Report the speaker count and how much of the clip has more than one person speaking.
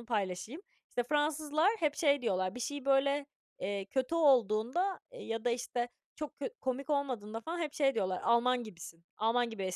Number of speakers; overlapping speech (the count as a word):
one, no overlap